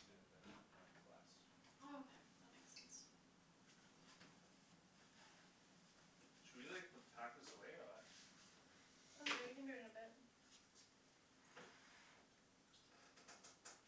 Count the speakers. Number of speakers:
two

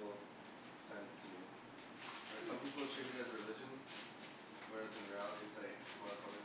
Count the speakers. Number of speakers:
one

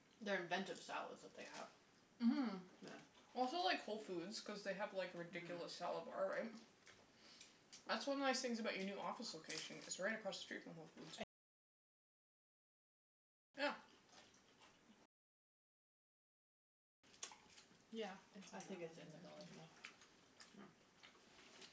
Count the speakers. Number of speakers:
three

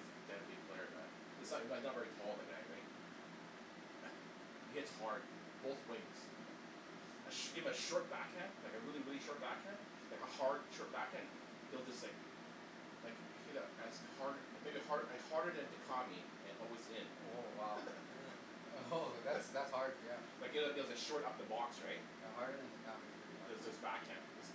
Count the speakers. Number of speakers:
two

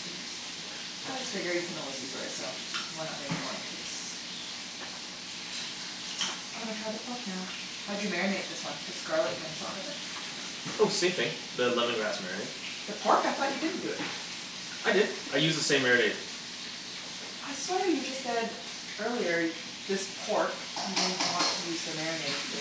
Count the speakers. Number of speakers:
two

